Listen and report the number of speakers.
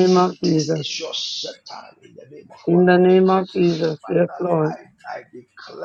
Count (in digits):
2